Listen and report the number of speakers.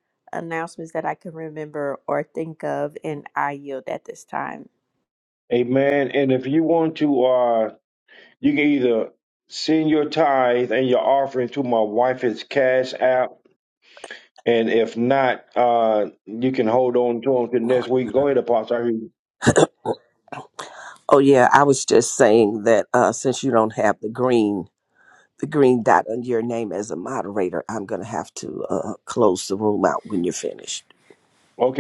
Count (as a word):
three